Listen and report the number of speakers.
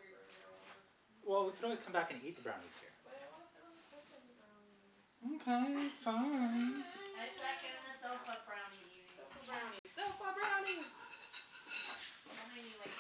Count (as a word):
three